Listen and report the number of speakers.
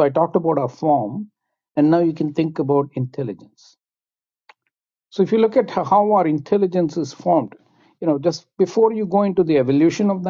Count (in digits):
1